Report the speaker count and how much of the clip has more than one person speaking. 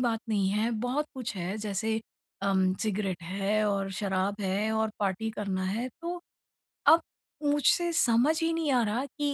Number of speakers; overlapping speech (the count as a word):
one, no overlap